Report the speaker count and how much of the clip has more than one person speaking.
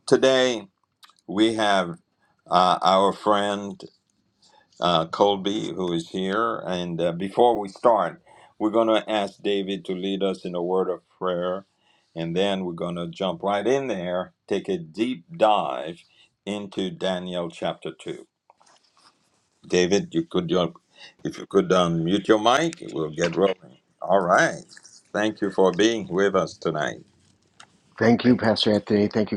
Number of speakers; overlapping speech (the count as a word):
two, no overlap